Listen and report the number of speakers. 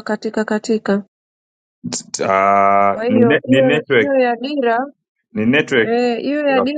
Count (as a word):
two